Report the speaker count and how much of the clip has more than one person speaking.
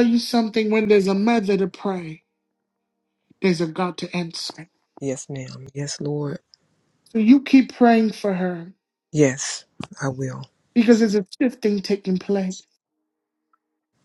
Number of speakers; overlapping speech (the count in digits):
2, no overlap